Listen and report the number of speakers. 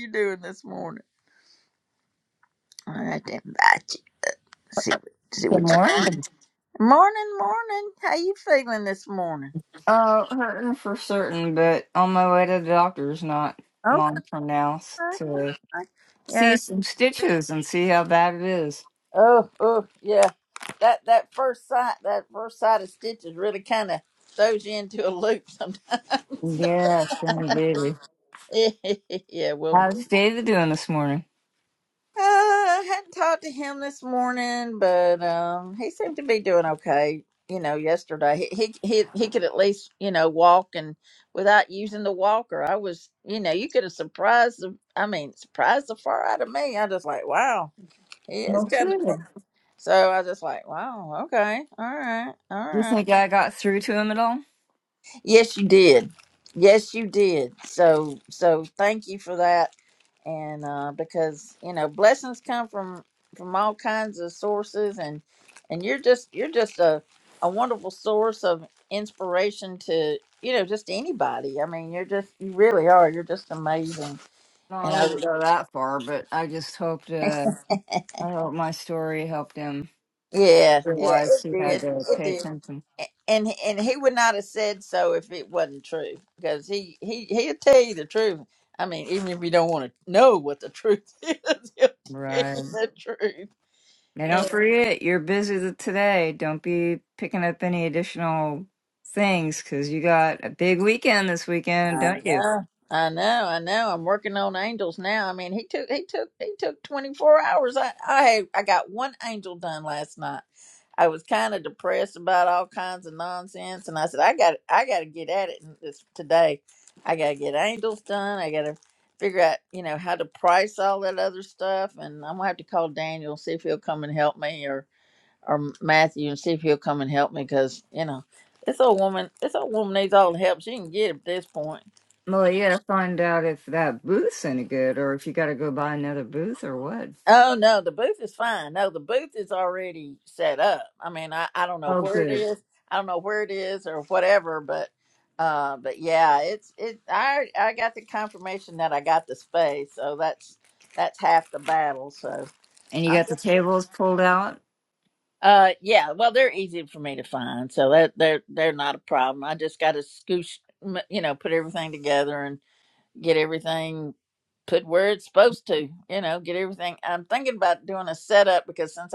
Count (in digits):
2